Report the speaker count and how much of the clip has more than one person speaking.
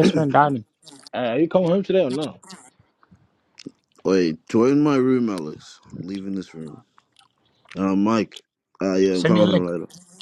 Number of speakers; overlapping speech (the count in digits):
3, about 5%